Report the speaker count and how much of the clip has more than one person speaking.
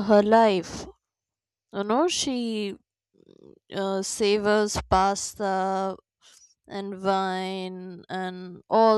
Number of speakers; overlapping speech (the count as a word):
one, no overlap